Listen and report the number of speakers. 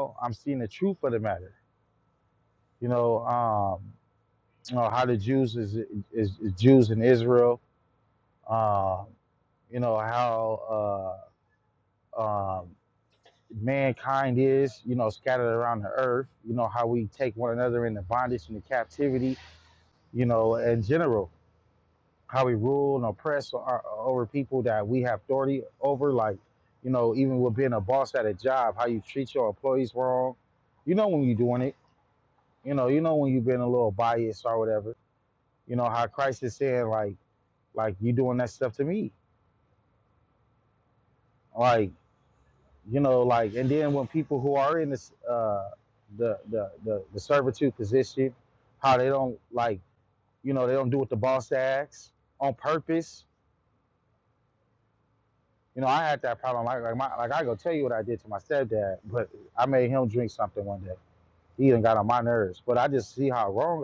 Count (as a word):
one